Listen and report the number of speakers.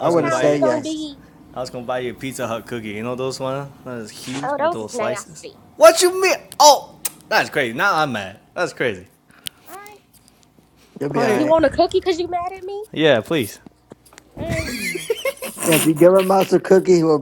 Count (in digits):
3